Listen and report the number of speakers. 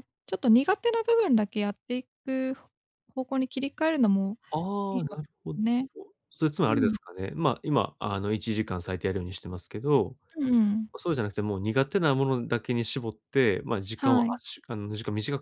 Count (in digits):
2